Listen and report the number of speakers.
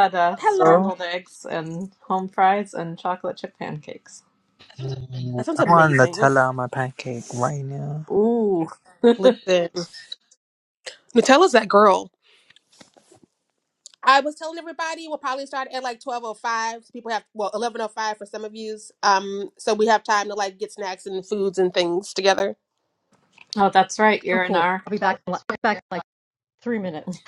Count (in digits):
4